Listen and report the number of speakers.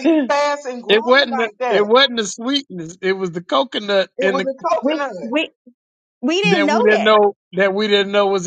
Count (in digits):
3